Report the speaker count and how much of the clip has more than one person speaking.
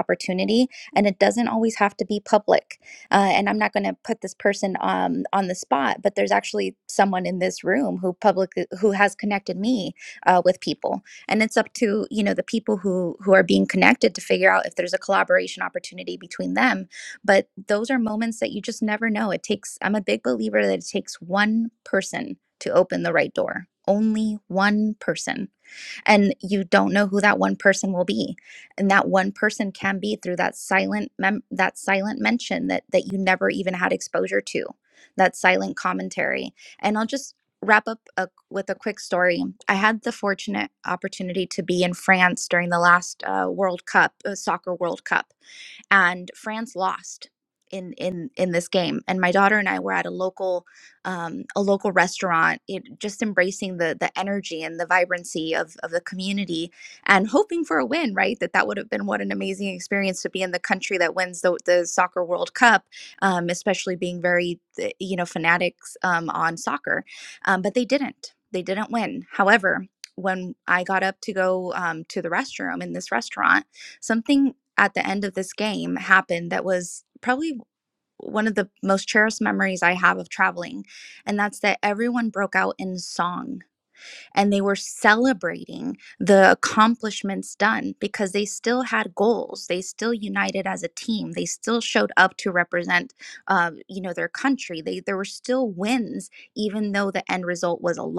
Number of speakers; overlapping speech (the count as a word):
one, no overlap